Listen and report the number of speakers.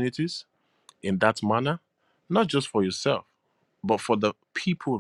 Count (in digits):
1